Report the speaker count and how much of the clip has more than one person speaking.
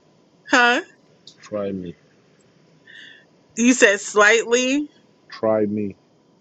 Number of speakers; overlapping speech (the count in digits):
2, no overlap